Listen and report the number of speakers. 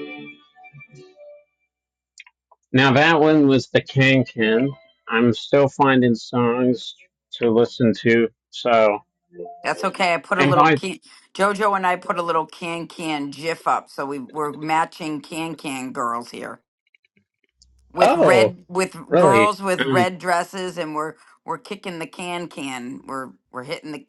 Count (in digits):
2